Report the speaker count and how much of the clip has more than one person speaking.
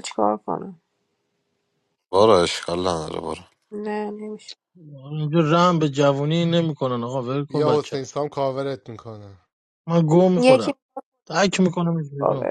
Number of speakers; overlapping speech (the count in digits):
4, about 8%